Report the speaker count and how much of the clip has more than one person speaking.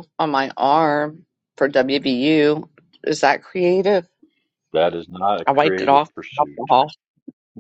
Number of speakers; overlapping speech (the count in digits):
2, about 15%